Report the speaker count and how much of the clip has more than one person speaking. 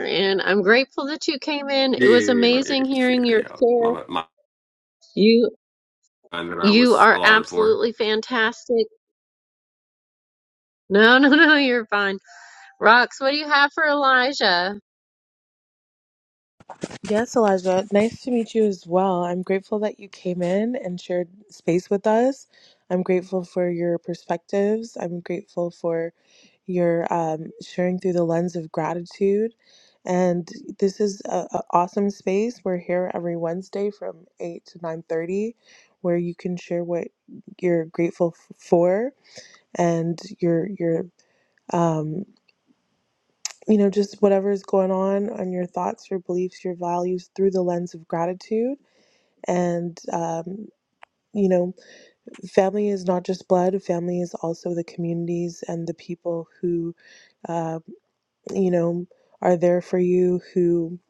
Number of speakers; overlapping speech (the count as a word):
three, about 5%